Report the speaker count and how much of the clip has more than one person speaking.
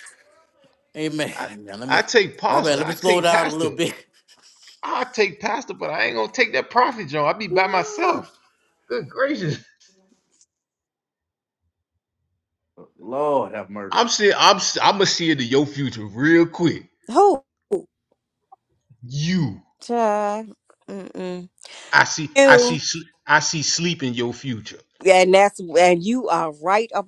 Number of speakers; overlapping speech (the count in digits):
3, about 12%